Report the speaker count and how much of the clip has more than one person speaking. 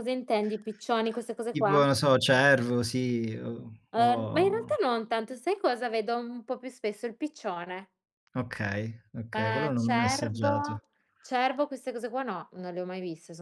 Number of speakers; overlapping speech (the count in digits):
2, about 19%